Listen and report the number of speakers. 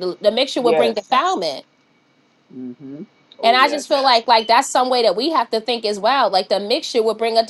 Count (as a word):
two